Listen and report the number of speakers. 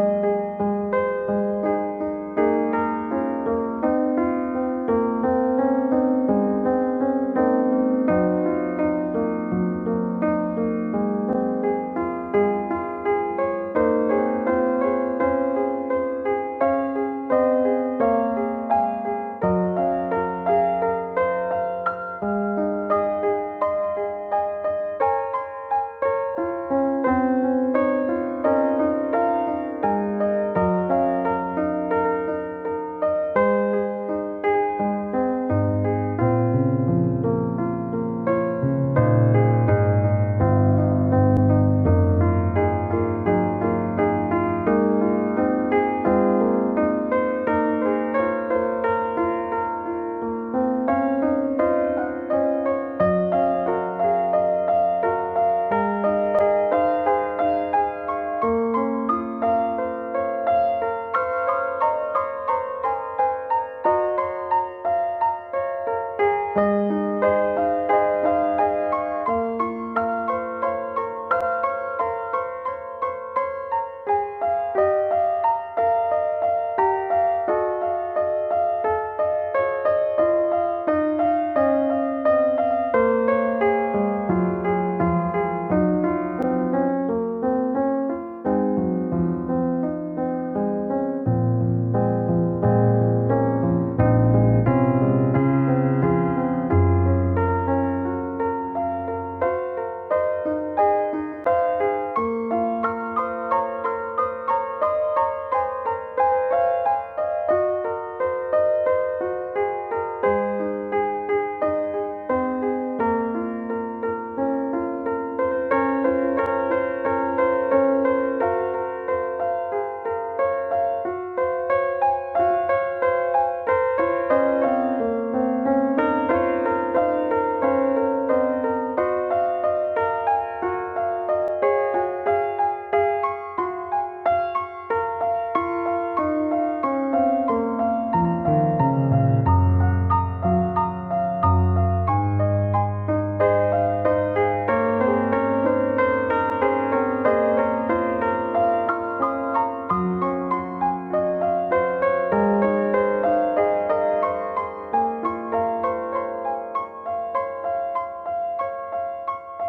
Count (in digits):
0